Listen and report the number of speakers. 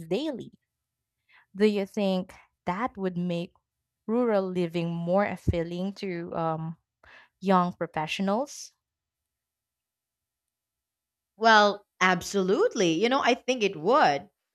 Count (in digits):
2